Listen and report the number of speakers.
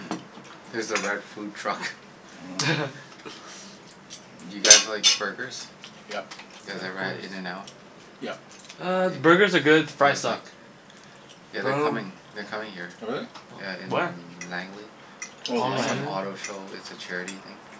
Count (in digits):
3